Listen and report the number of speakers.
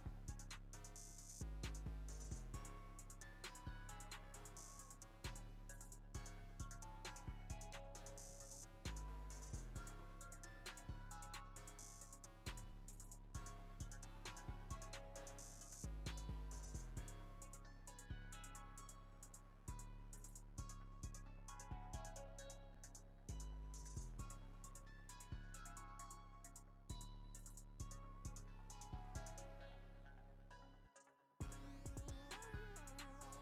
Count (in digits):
0